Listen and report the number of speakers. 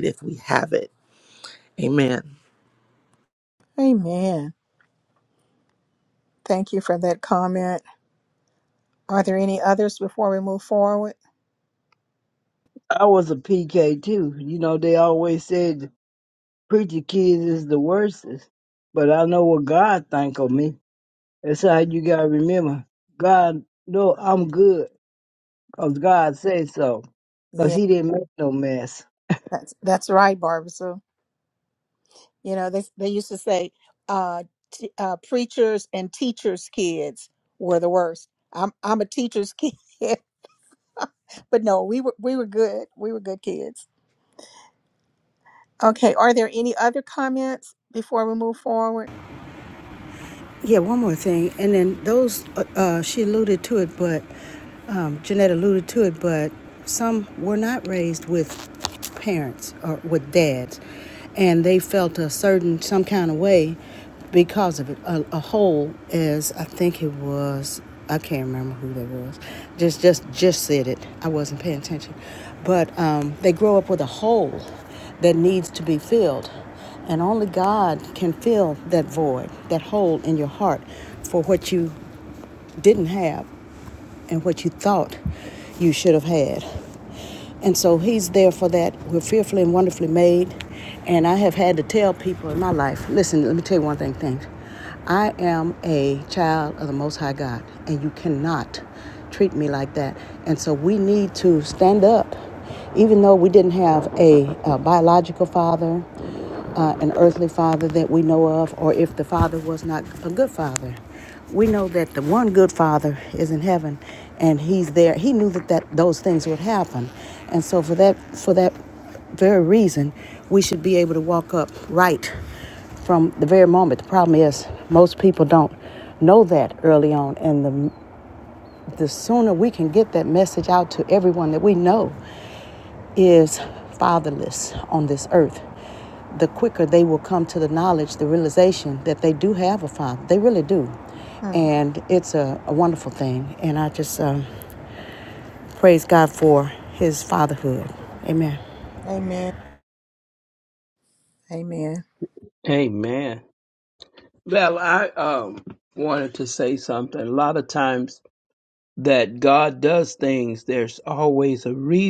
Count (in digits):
5